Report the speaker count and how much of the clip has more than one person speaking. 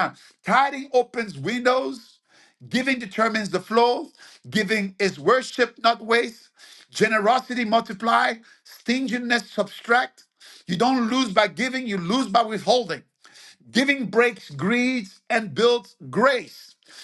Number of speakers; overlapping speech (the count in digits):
1, no overlap